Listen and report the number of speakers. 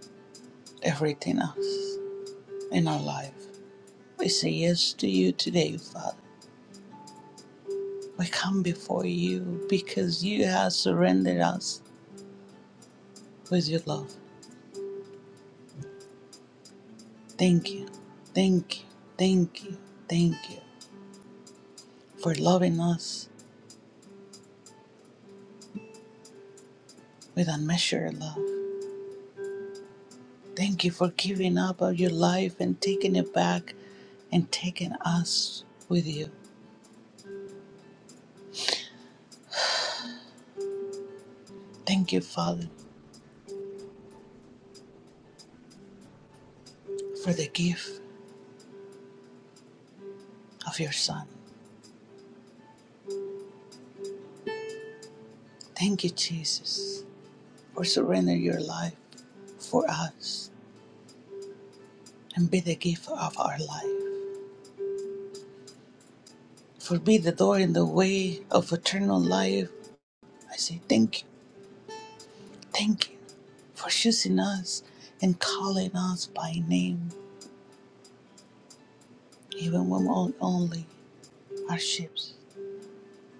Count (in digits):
1